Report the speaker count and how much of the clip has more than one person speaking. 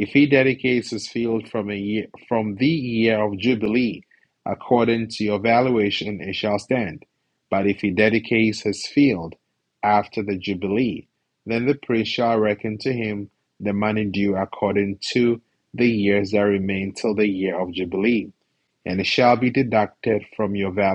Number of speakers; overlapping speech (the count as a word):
one, no overlap